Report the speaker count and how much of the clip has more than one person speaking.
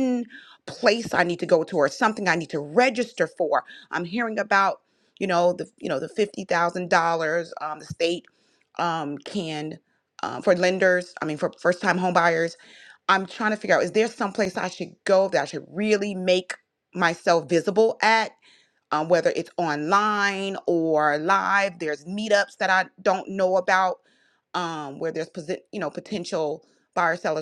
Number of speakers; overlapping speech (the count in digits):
1, no overlap